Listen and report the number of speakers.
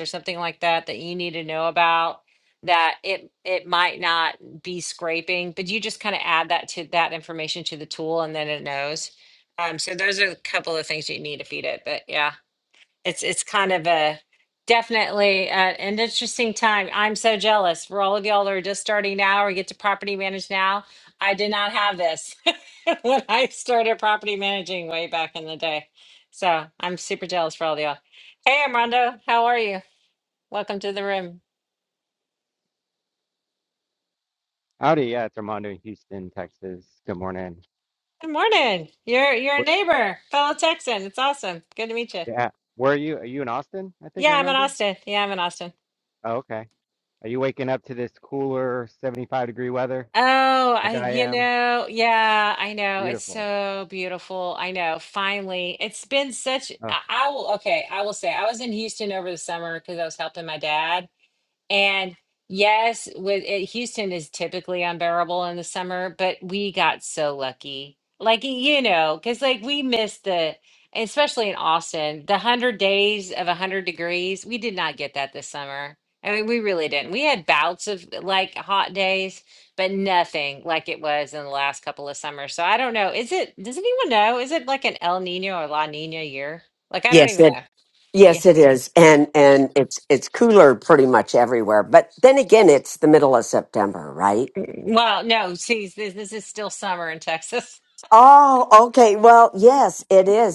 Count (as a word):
three